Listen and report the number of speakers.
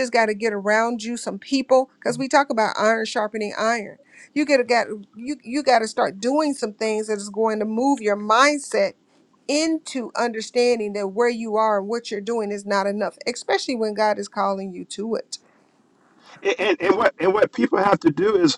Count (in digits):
2